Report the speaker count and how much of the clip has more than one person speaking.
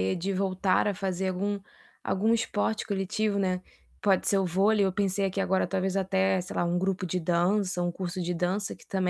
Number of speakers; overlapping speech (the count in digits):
1, no overlap